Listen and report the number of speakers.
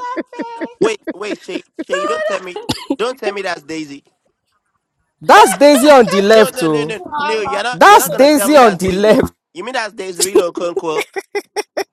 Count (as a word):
three